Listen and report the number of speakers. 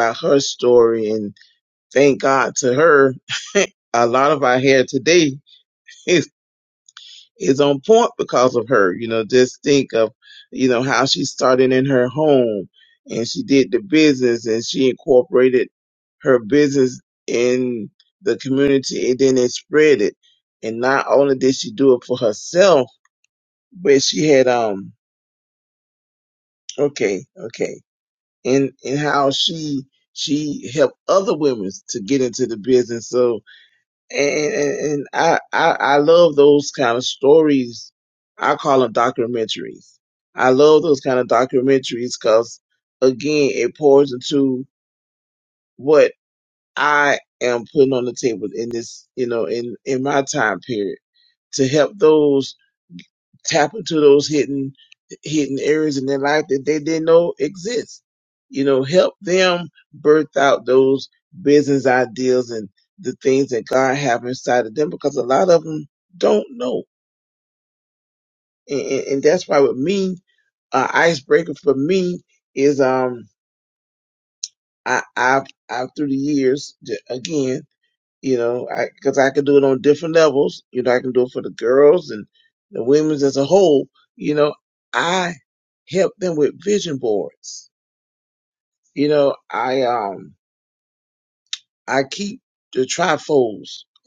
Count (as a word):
one